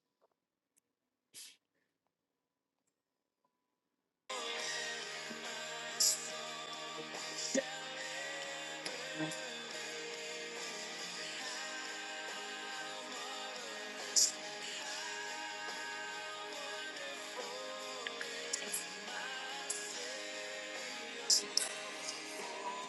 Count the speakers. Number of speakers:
zero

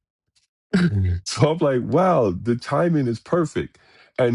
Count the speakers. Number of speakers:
one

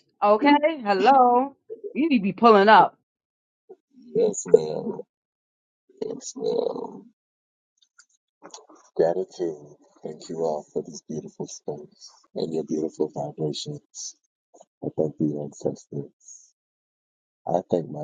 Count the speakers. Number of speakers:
two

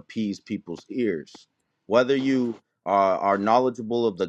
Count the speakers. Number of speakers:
one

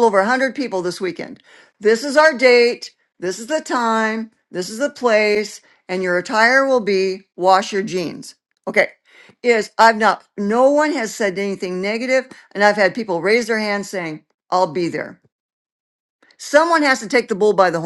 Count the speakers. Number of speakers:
one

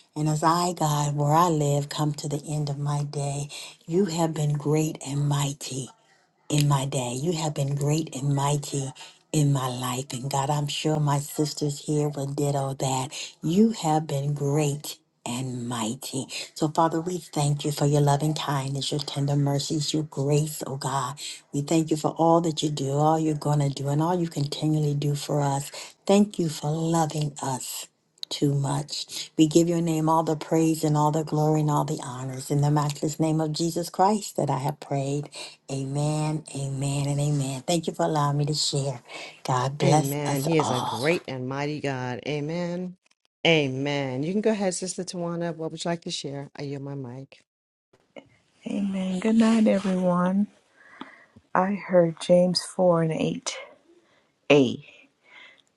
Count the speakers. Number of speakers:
three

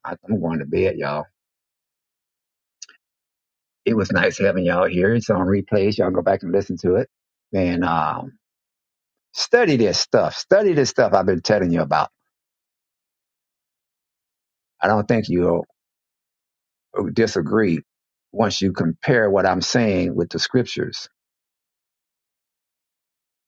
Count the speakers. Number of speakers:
one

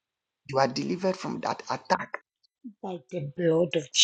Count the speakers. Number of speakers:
two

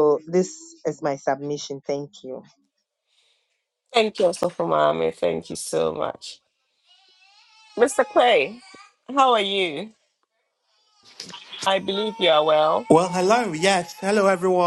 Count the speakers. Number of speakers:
three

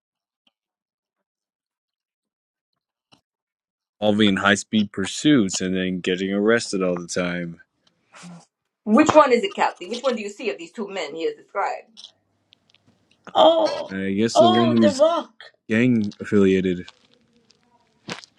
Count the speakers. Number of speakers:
three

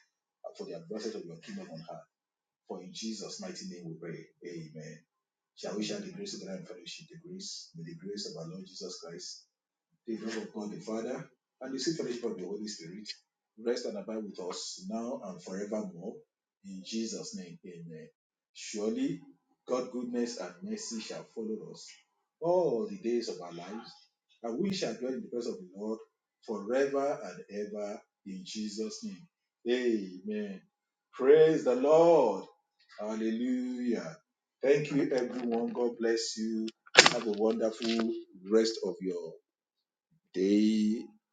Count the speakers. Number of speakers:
one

